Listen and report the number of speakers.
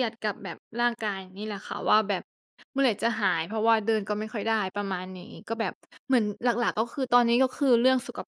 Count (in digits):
1